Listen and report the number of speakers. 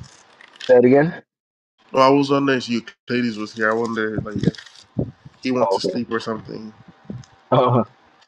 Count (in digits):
2